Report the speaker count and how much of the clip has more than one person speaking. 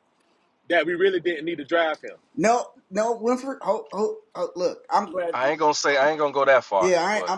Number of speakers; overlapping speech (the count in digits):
3, about 8%